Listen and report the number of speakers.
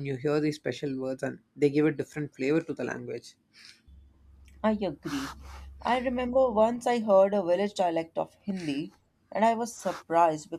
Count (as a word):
two